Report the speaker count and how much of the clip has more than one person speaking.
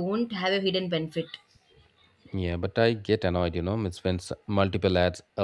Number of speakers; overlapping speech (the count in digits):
2, no overlap